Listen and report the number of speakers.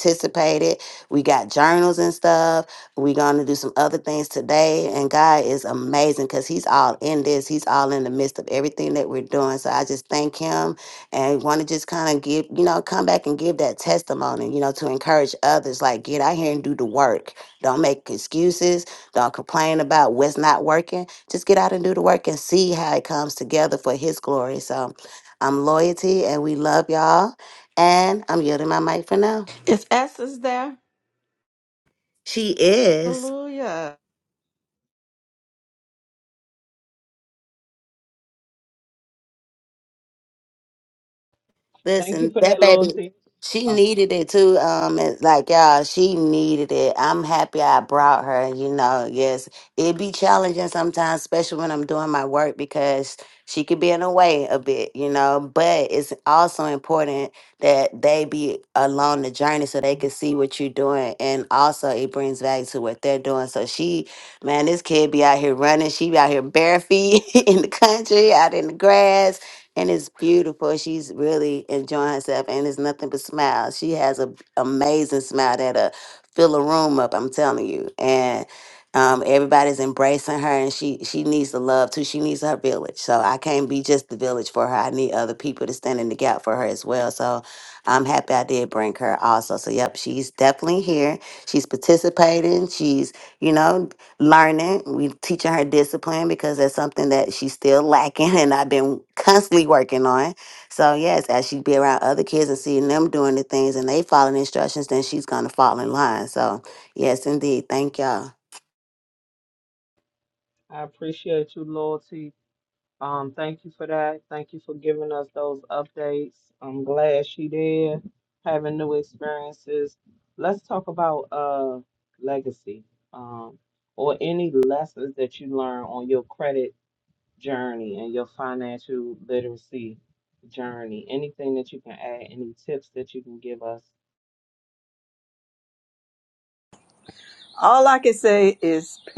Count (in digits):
4